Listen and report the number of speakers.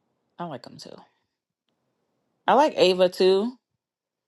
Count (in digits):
1